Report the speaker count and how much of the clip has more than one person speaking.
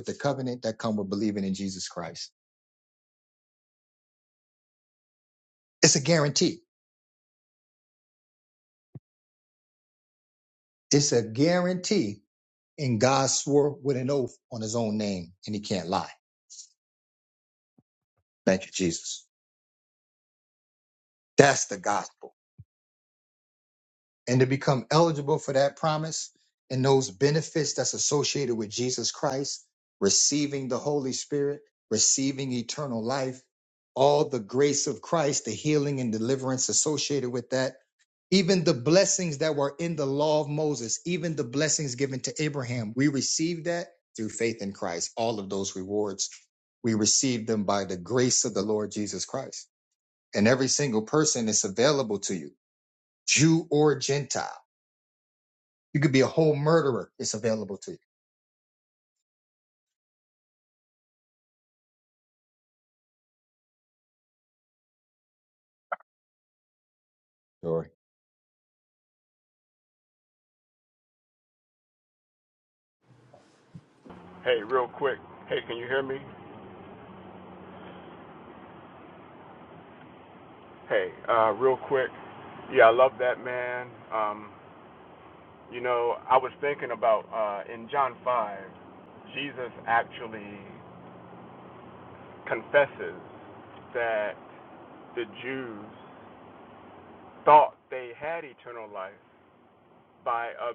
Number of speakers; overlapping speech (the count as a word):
two, no overlap